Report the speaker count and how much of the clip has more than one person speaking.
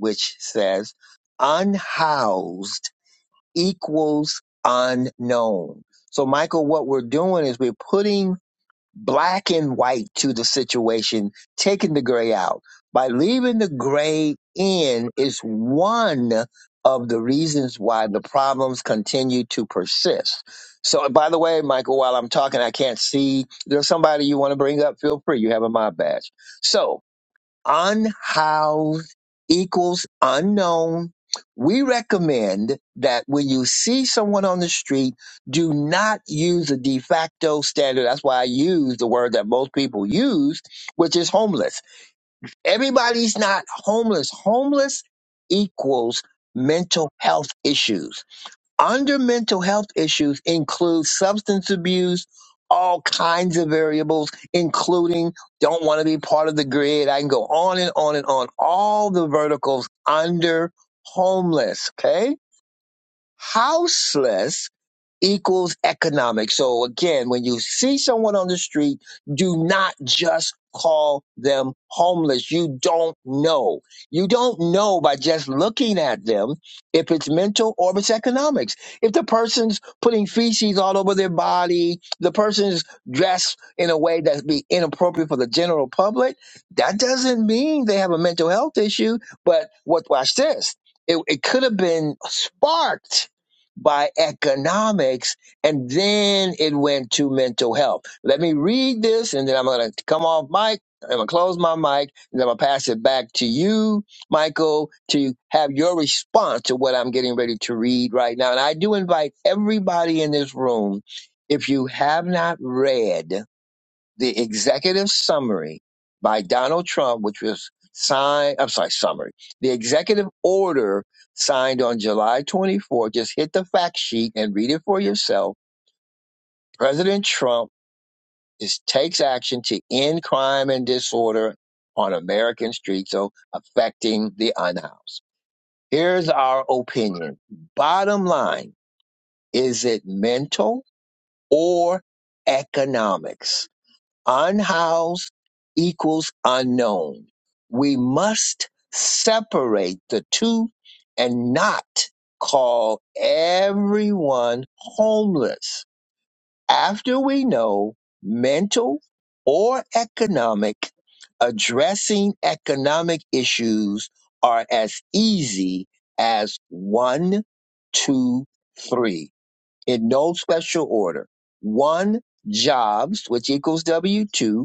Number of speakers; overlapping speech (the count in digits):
1, no overlap